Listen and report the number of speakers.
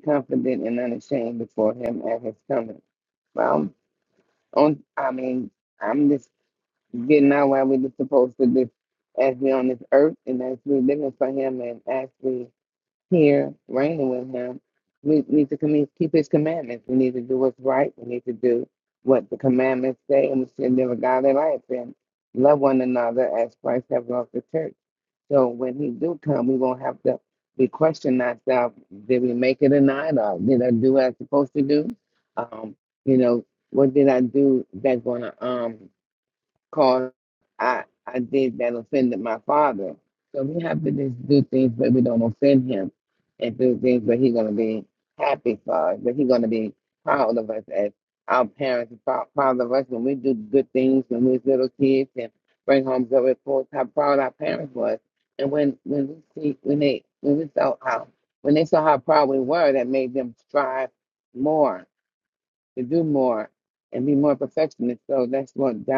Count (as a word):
one